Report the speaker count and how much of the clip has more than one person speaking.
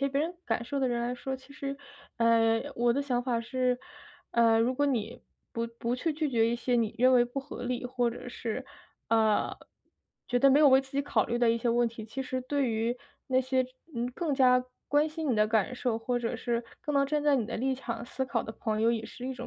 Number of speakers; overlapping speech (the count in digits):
1, no overlap